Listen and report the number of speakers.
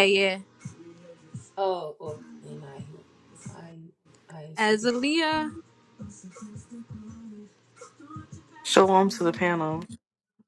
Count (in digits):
3